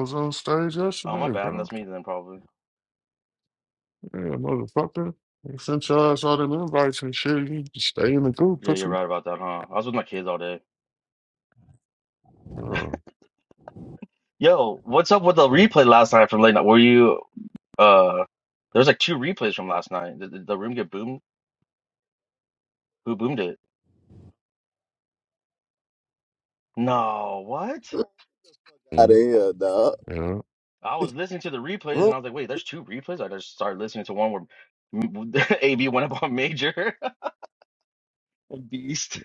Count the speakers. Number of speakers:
three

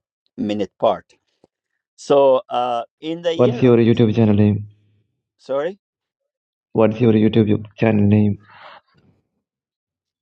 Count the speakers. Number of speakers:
two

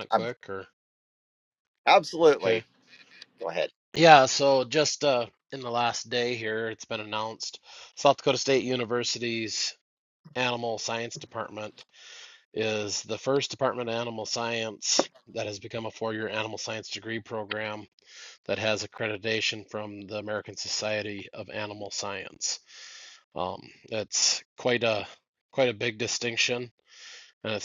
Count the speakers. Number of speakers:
two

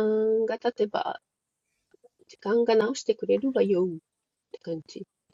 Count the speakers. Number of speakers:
one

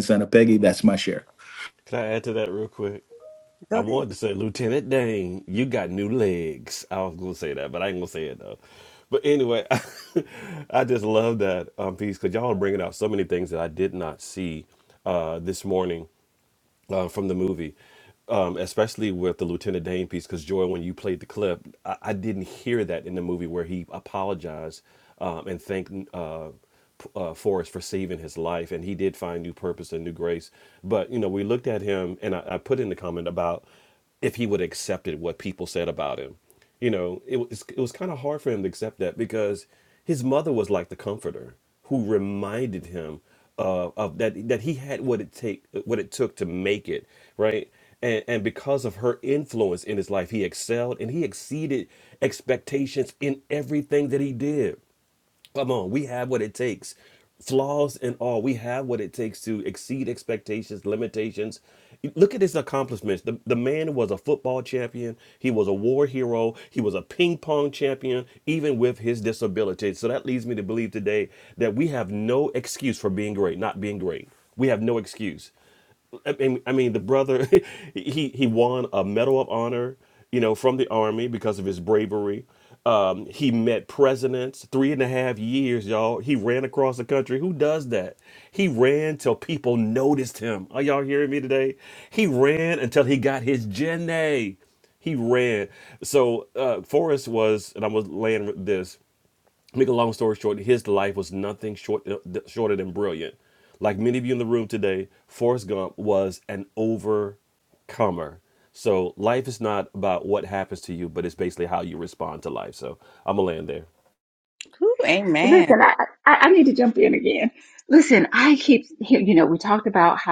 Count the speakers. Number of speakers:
four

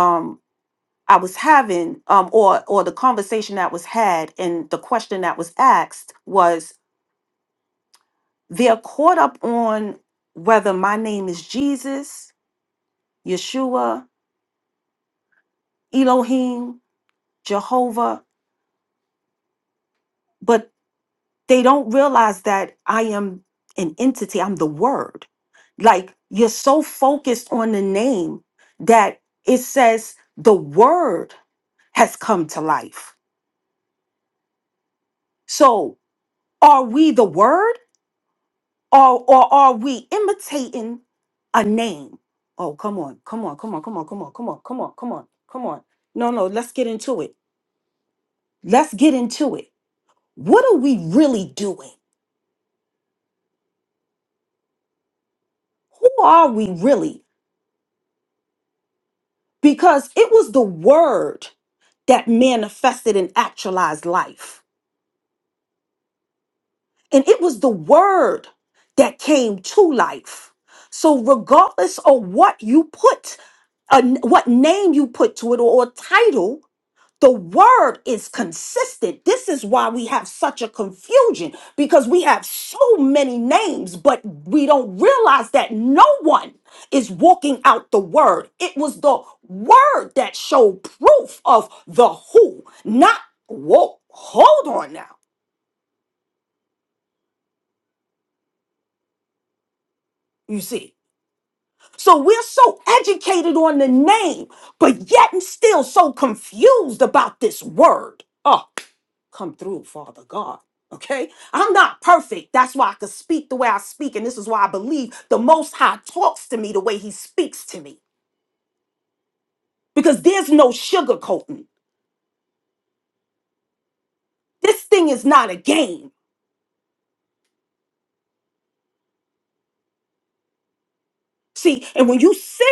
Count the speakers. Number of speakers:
one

